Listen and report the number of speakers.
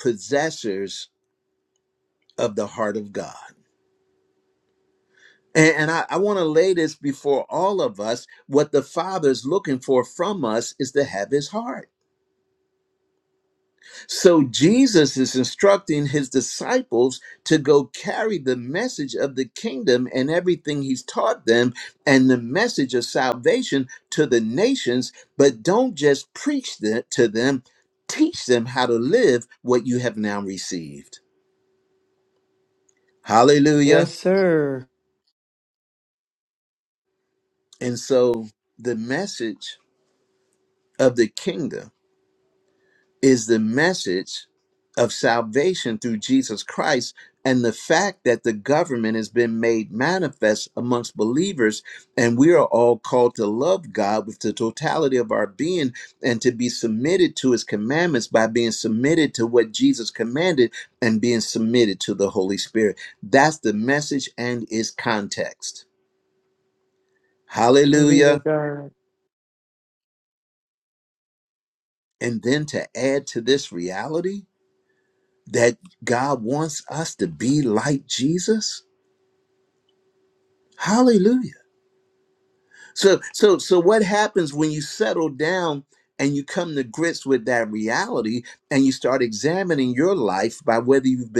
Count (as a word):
two